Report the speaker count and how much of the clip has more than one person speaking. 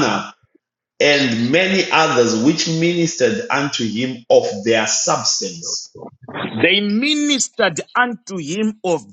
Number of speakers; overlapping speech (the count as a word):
two, no overlap